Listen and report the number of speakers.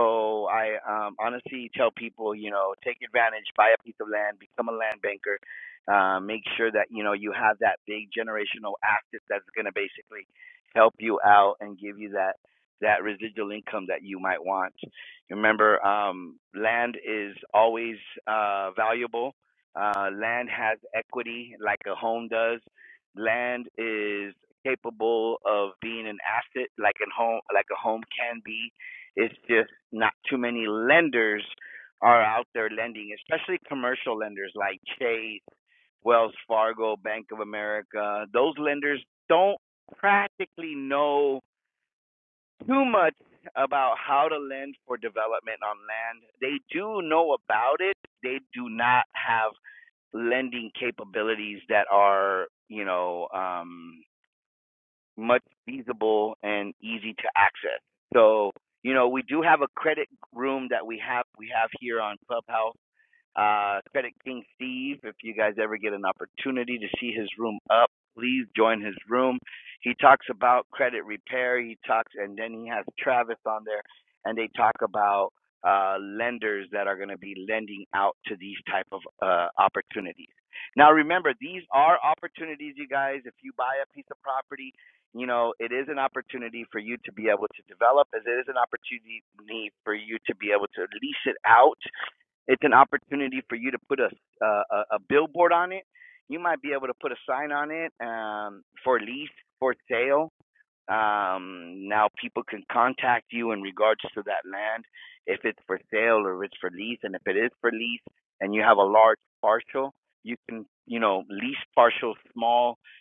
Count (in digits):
1